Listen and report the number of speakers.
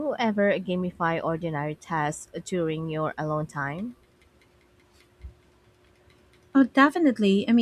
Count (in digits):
2